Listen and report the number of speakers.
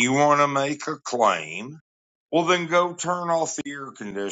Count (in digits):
1